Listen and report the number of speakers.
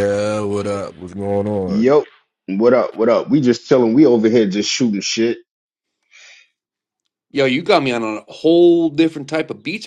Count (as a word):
three